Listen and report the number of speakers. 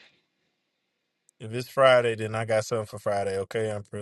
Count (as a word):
one